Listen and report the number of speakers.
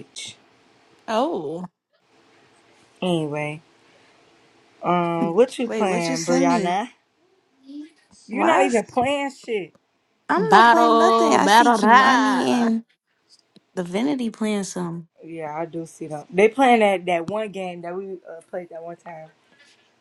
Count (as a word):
three